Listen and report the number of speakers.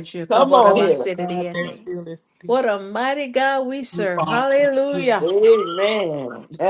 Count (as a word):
three